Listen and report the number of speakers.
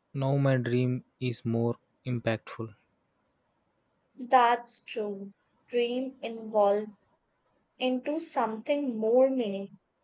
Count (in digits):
2